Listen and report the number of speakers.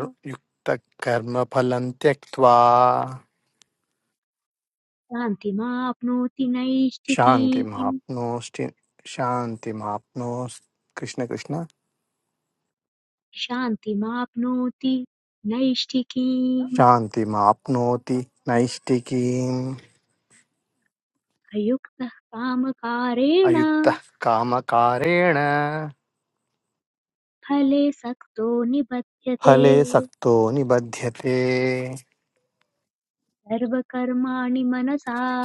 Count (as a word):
two